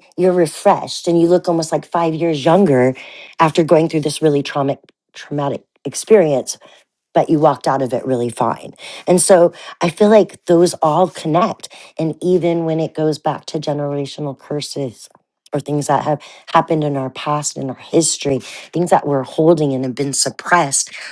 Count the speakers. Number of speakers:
1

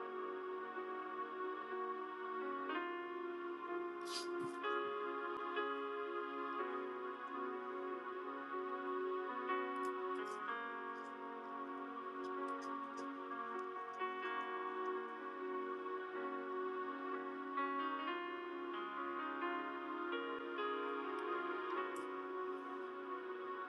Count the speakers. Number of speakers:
0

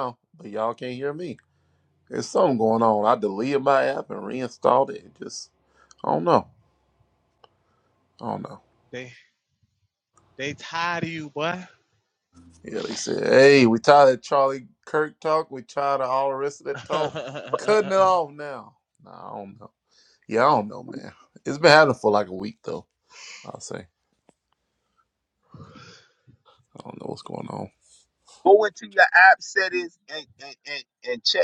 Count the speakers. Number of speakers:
3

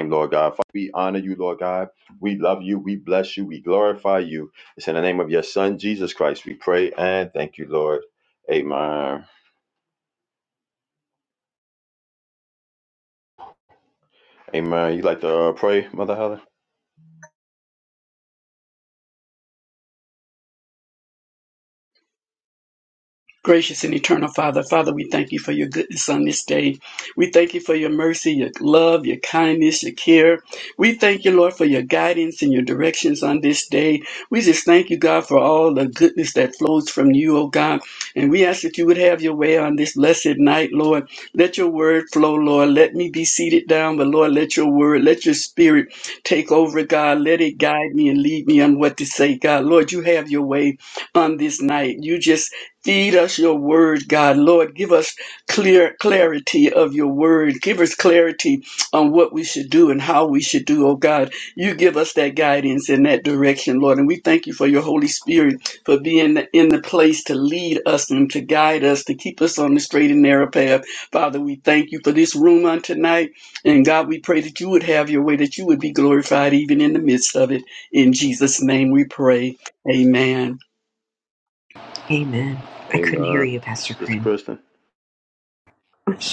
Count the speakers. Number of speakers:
3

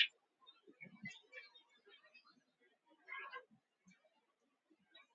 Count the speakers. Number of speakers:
0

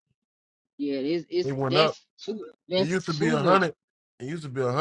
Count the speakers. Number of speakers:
2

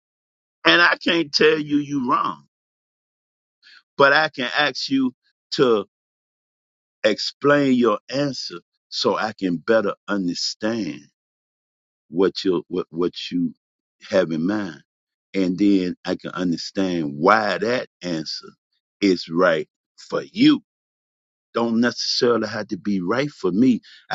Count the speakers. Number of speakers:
1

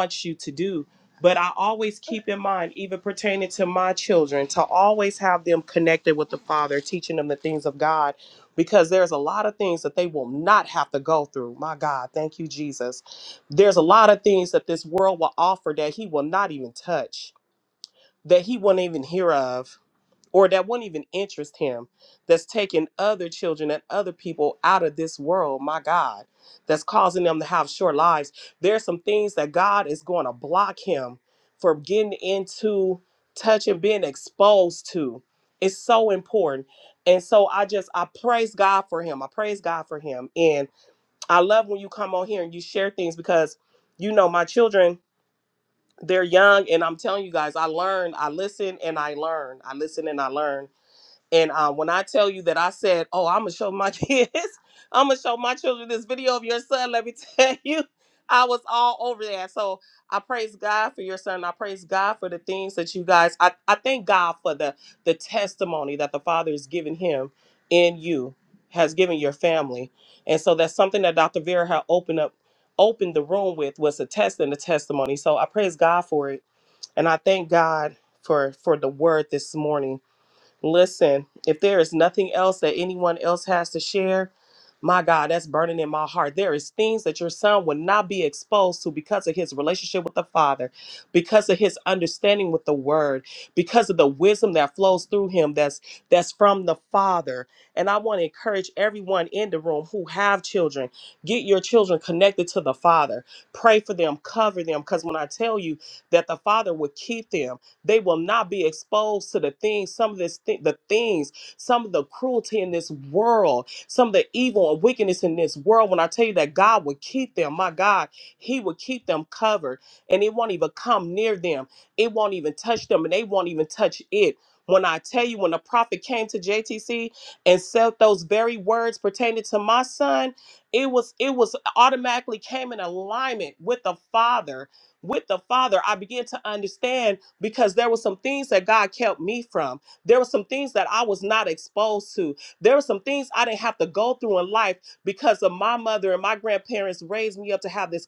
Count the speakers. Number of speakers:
1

